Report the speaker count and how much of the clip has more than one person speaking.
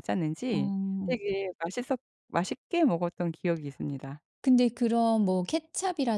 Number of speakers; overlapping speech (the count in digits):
2, about 5%